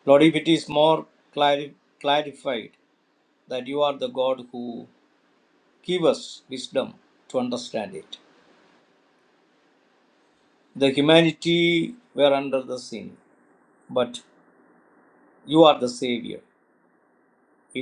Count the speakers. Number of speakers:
1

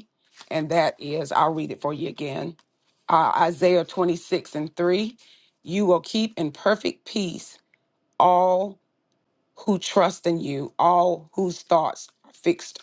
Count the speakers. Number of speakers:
1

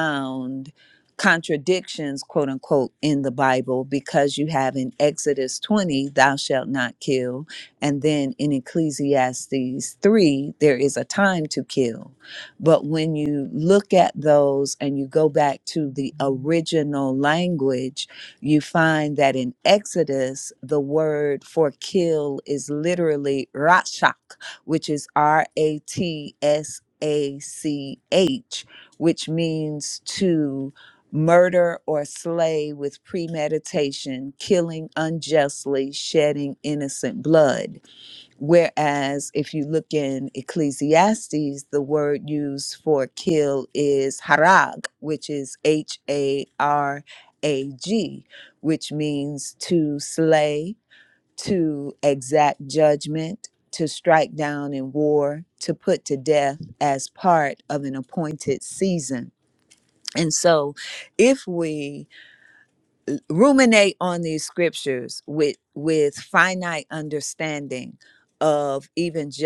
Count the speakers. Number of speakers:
1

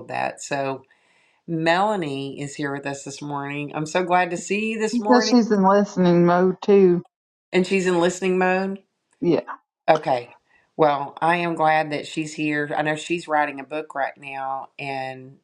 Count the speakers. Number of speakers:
2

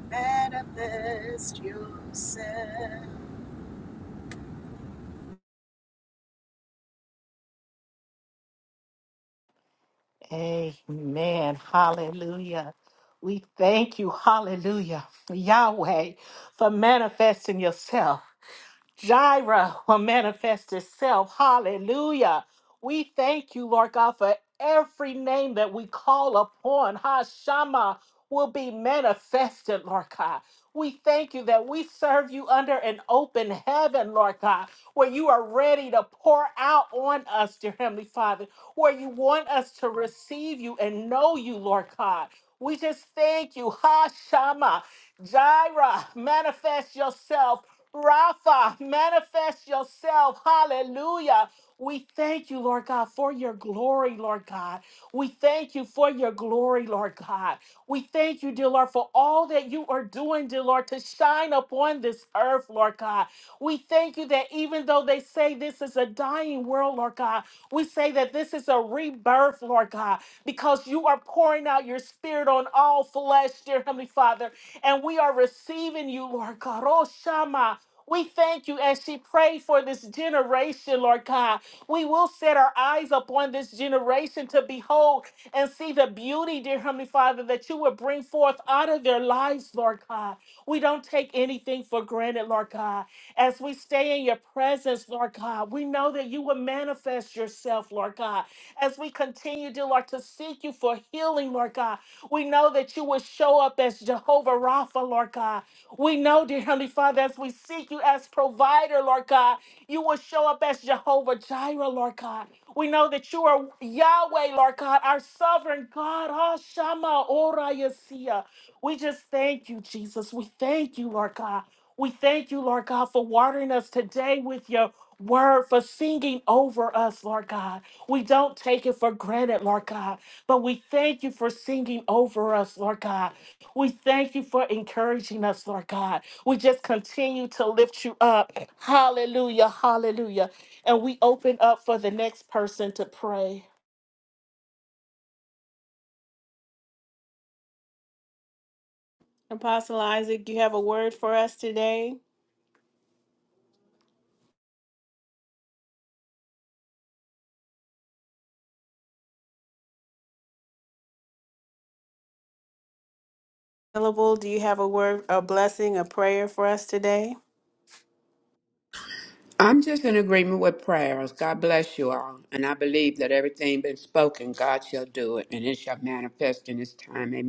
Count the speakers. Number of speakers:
4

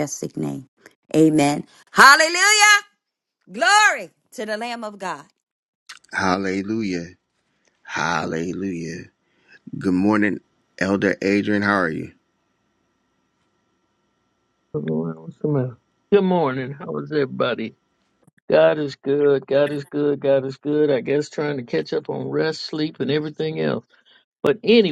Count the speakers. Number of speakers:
3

